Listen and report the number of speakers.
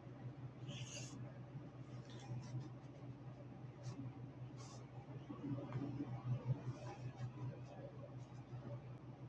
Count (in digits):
0